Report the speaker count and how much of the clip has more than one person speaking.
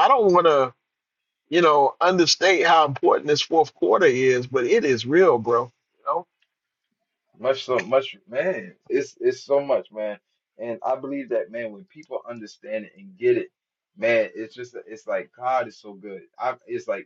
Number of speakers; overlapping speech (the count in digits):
2, no overlap